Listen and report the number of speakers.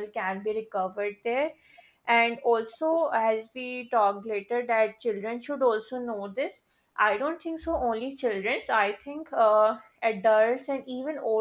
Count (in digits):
1